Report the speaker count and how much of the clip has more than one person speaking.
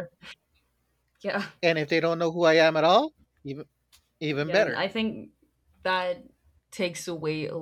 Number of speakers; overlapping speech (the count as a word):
two, about 4%